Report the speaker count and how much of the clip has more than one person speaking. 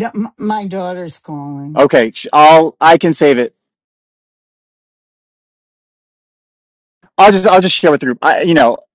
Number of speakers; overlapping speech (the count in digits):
2, under 1%